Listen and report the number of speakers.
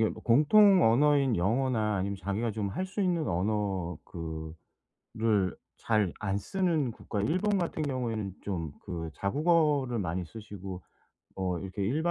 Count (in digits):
1